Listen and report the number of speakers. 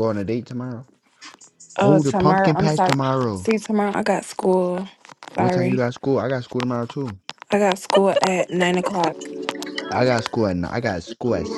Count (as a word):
two